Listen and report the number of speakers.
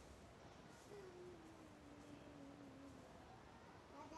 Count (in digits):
0